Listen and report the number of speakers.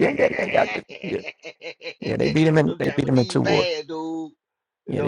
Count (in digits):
2